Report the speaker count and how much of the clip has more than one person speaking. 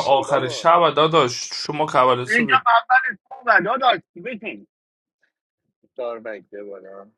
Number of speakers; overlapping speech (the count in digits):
3, about 13%